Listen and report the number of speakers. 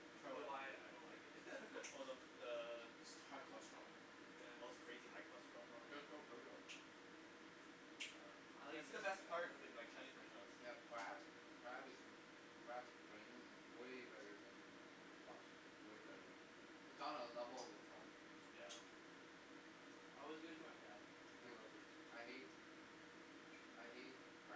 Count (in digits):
3